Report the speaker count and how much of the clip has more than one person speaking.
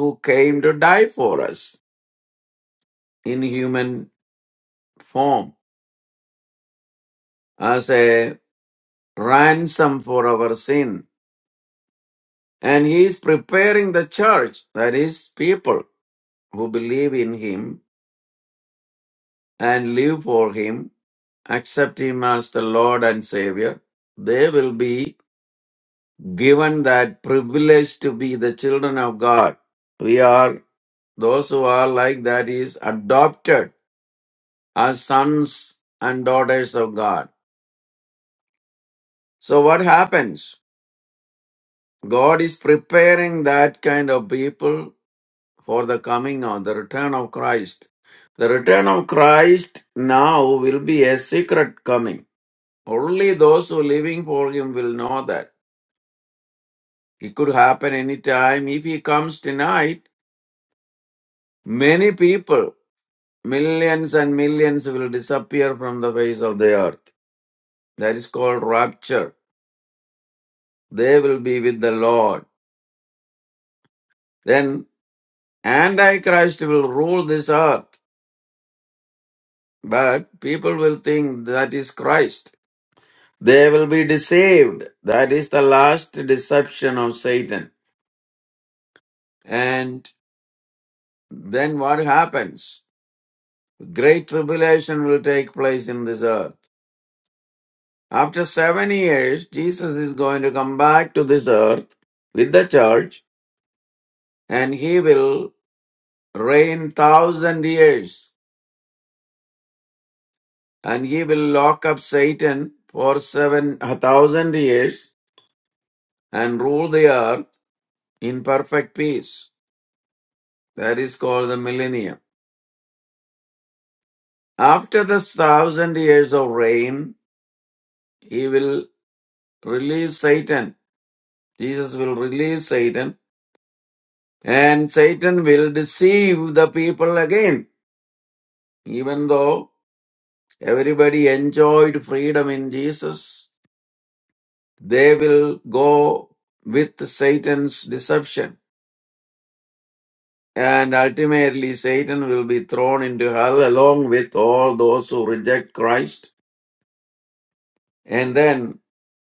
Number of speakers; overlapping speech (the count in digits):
1, no overlap